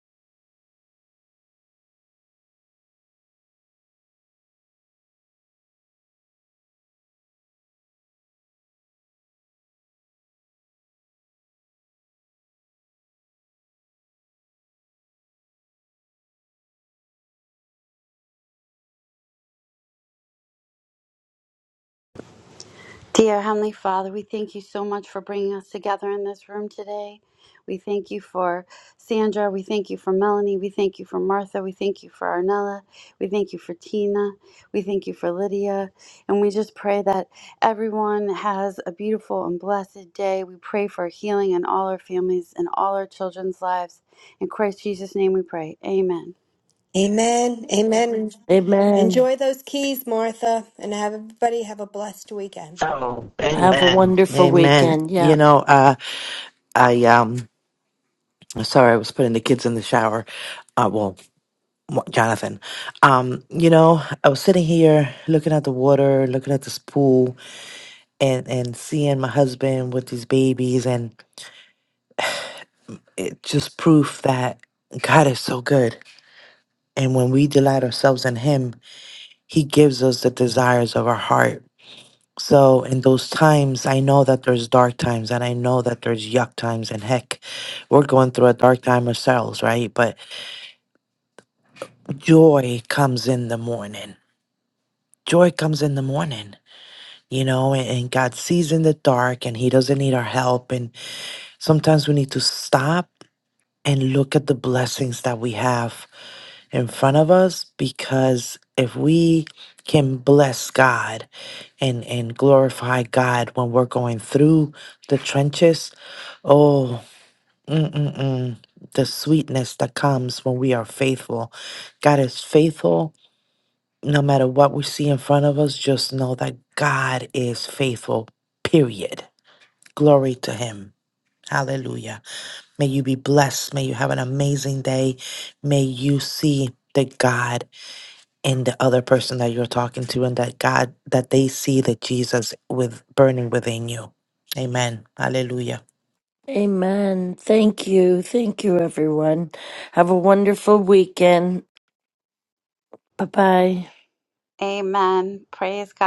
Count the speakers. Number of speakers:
four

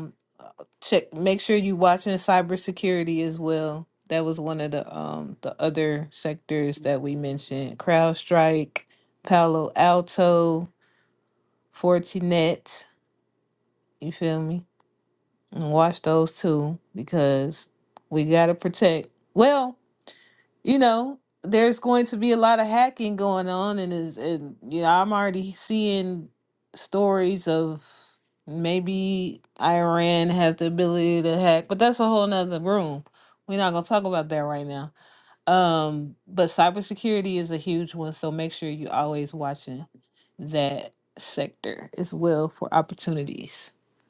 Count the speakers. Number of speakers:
one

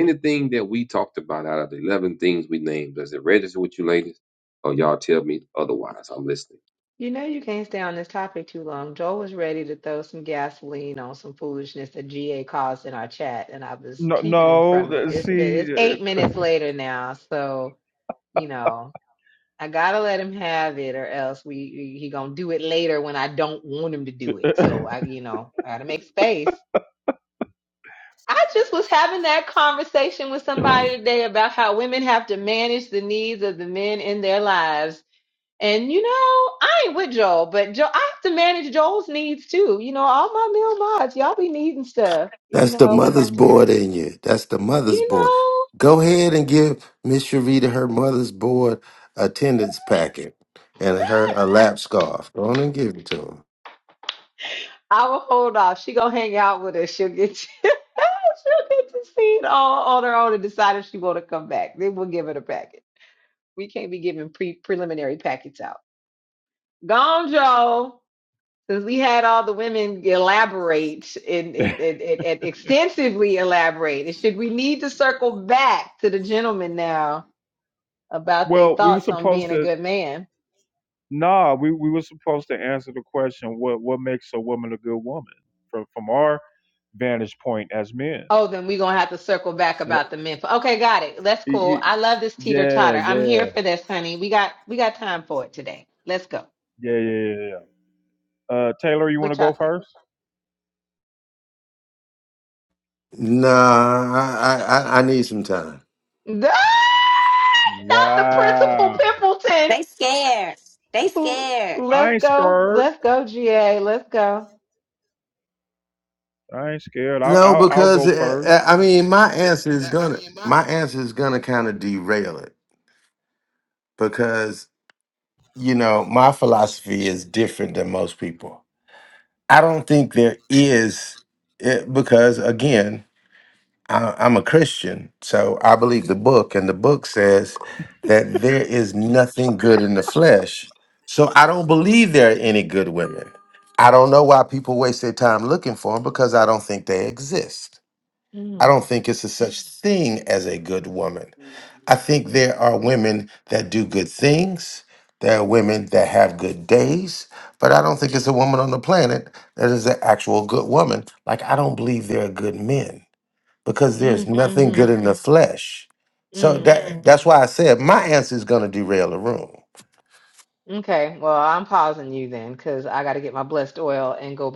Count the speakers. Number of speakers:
five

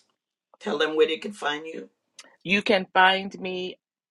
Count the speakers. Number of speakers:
two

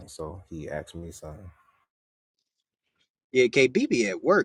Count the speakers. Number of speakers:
two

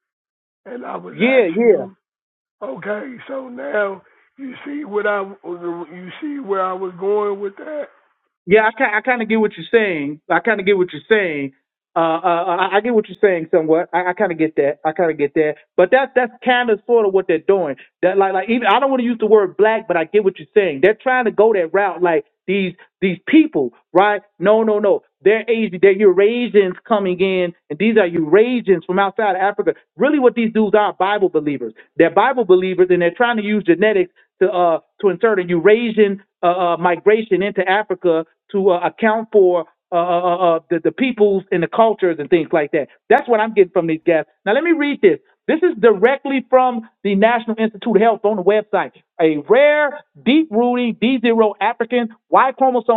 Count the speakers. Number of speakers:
two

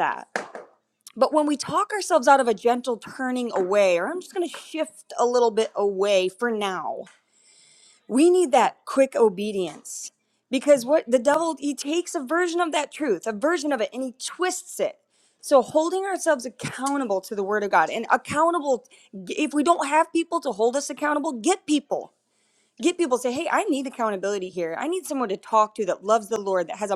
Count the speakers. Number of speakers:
one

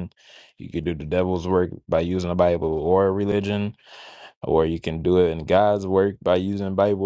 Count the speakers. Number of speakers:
one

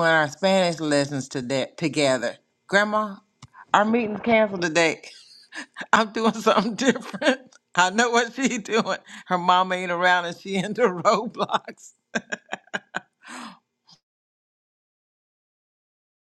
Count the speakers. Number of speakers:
one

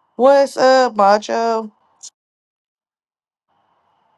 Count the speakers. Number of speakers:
one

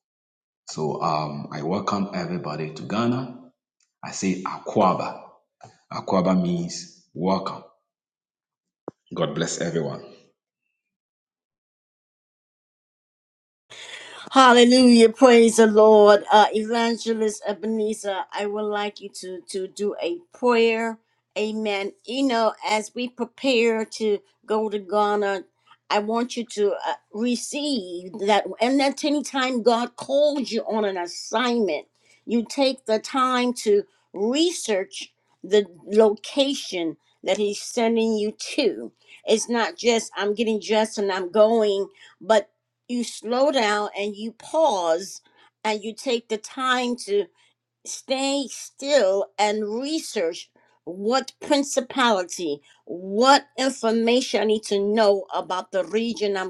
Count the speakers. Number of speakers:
two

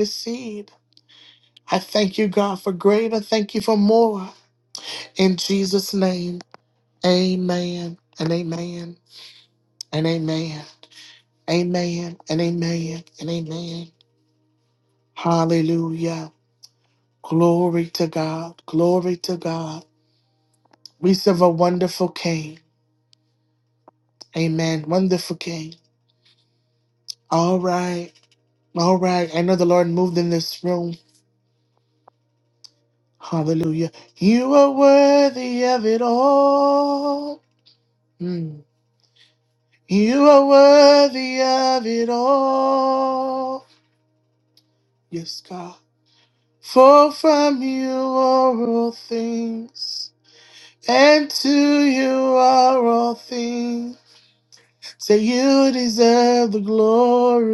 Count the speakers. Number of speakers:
one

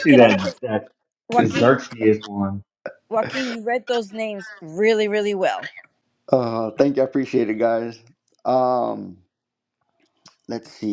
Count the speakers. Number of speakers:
three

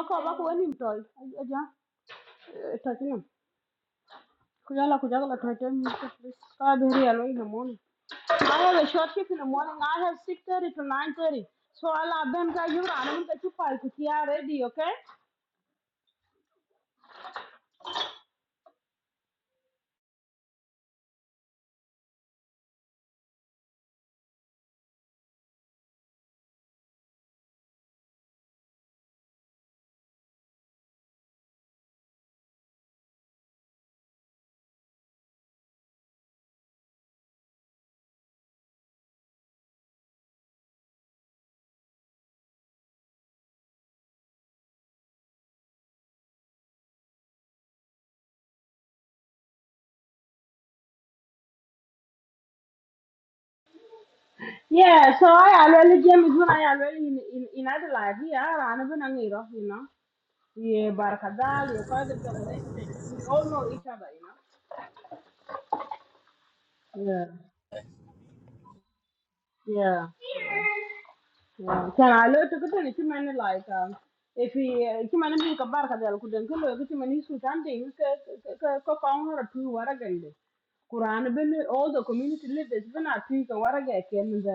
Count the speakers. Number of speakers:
one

